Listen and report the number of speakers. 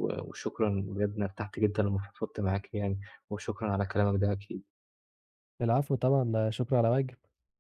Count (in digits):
2